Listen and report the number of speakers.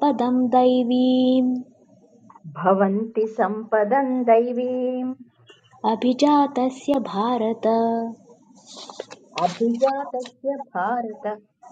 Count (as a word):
two